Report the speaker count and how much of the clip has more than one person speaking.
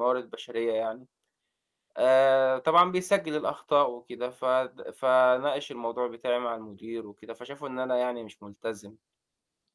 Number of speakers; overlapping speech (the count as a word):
one, no overlap